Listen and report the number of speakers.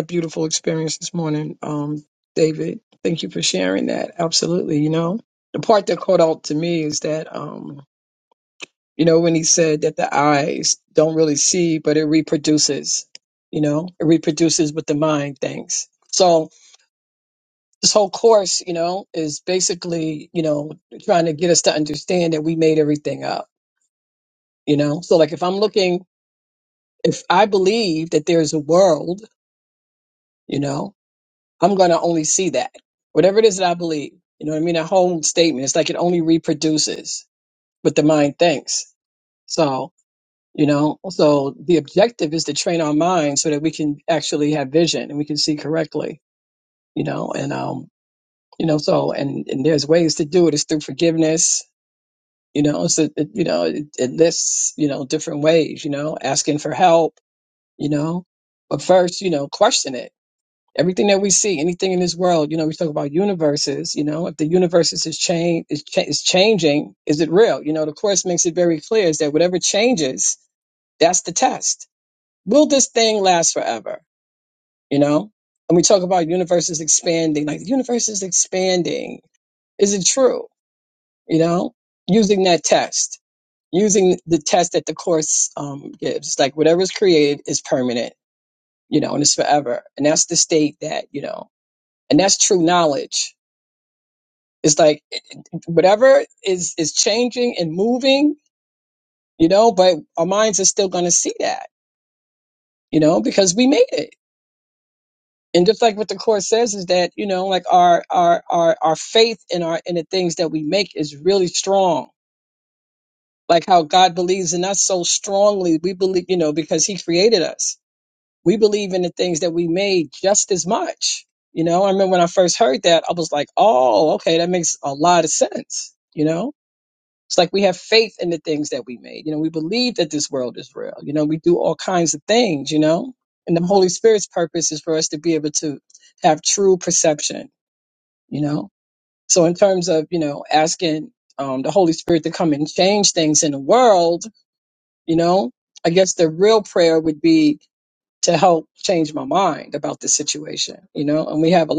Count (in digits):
1